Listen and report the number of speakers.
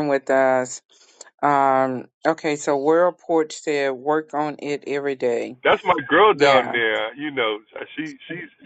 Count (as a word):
two